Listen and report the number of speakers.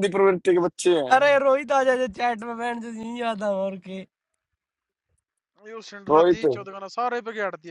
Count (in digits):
3